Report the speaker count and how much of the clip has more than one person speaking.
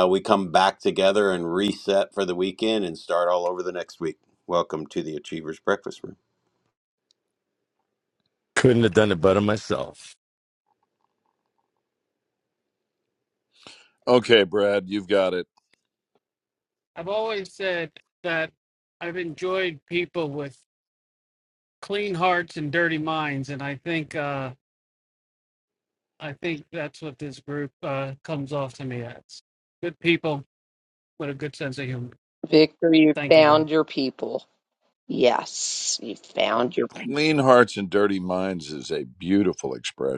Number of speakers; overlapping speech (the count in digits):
5, about 1%